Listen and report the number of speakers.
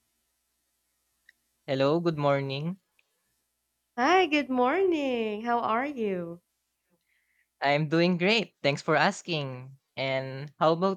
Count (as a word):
two